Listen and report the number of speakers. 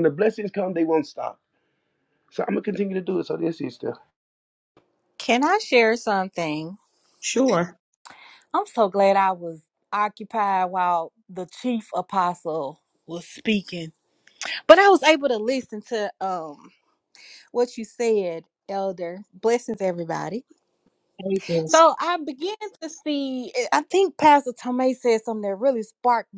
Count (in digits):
3